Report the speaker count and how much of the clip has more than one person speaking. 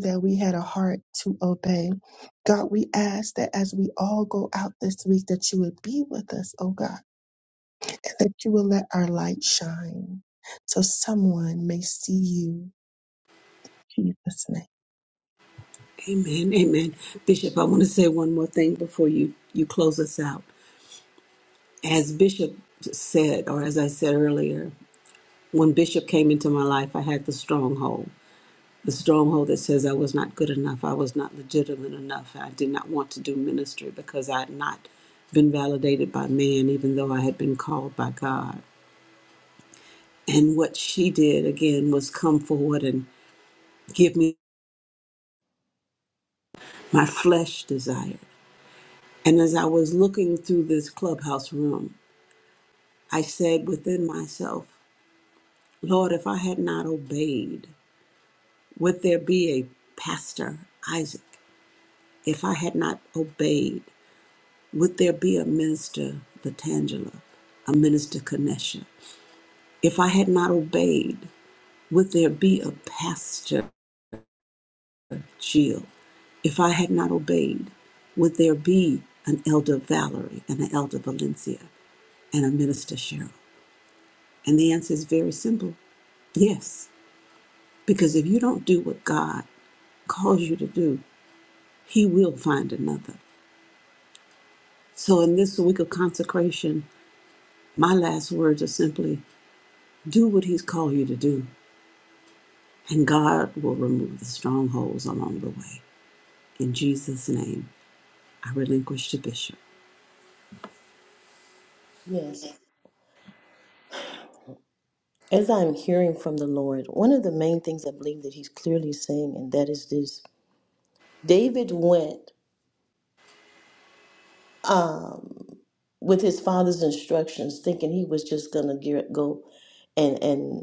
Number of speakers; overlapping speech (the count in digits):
3, no overlap